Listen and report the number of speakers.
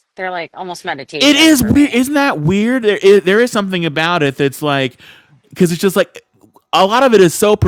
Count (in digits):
2